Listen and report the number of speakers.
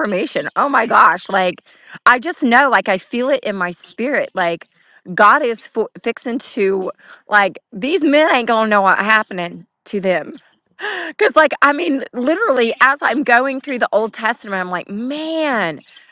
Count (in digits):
1